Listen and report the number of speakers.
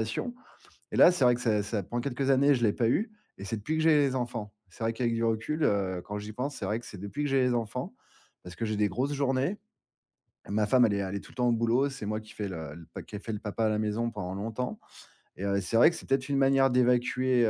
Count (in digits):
1